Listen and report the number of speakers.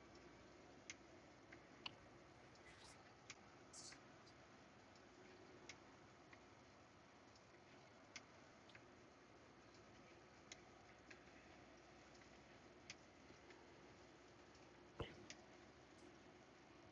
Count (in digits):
0